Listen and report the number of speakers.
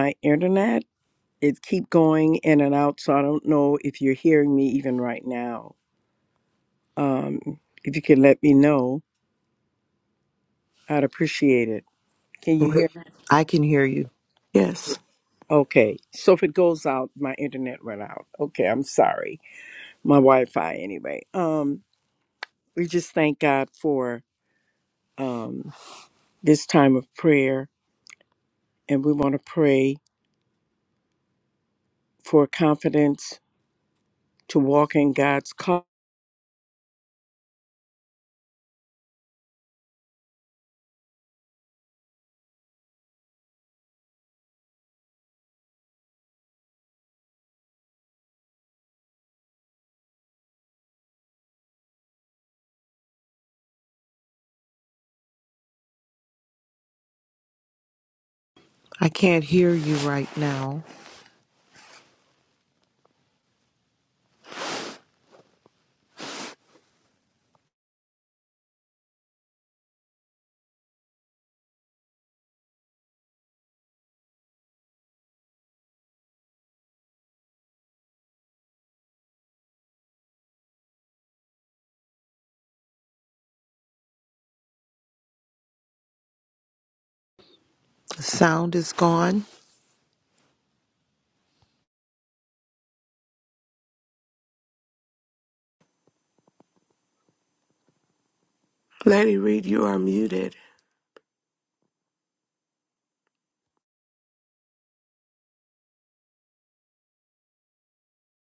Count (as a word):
three